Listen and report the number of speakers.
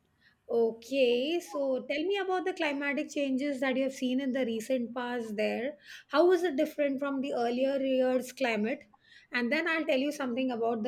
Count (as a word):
one